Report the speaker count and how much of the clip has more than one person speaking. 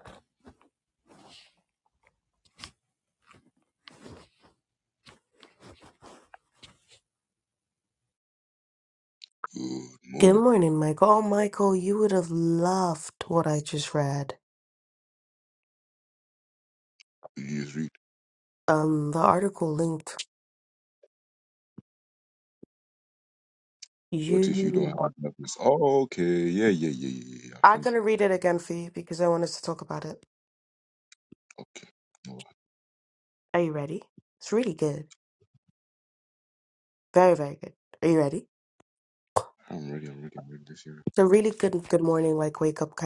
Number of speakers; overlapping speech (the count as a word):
two, about 3%